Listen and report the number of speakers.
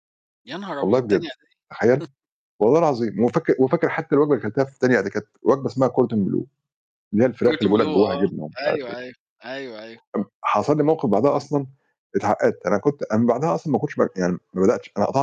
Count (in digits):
2